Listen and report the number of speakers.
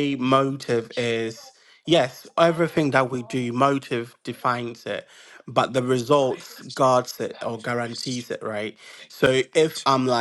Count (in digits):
1